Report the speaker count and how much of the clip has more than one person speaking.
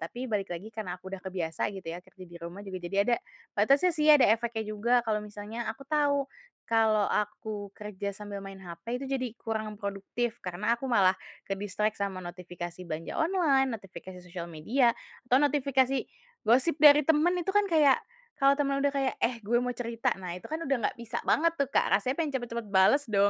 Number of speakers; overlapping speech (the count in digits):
1, no overlap